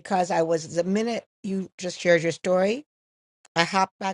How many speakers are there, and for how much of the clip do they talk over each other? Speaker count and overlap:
one, no overlap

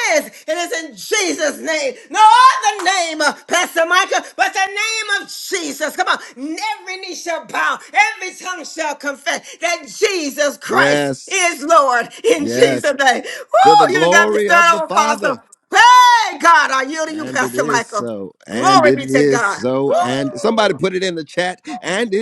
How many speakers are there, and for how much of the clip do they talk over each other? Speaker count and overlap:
two, about 25%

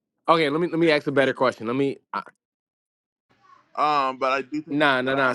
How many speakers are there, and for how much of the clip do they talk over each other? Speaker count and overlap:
two, about 12%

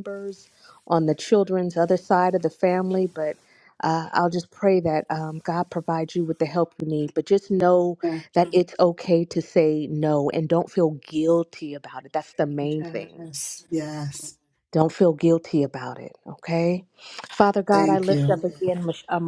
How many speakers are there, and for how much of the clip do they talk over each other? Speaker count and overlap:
two, about 4%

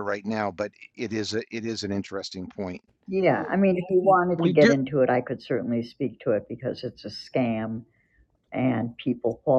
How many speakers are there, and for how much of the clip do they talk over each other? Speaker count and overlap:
two, no overlap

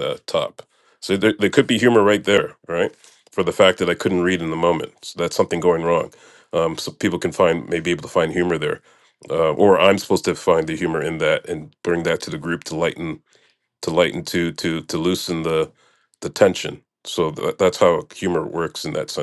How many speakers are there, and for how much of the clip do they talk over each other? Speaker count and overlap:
one, no overlap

